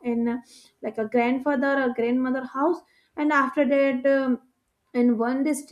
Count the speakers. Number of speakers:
1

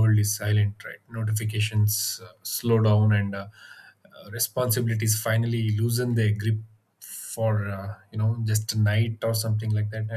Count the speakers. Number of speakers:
1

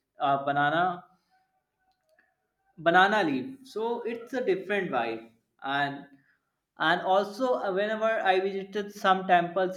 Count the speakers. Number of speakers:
1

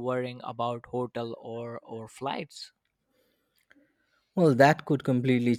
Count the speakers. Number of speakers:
2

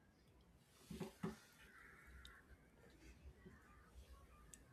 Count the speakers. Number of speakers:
0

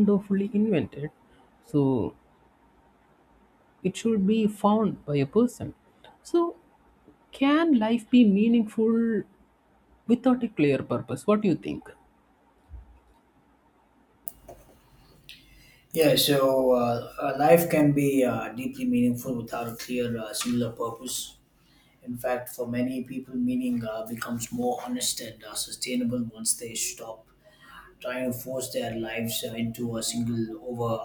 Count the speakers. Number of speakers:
2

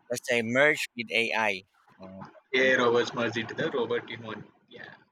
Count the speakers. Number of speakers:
2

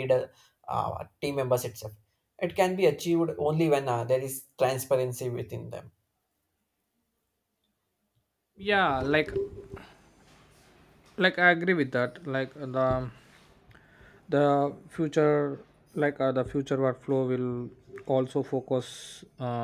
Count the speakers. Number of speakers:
2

